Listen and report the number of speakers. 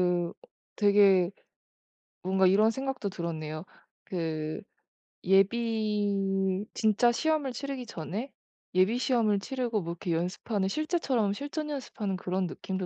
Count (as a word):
one